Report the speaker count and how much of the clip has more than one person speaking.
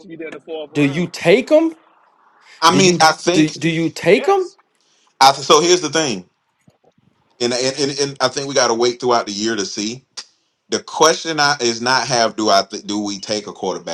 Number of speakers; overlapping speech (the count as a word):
three, about 9%